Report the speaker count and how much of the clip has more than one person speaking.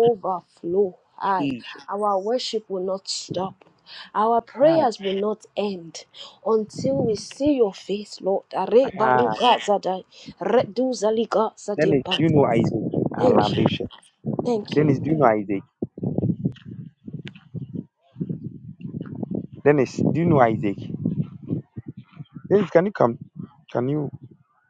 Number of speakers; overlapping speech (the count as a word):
two, about 9%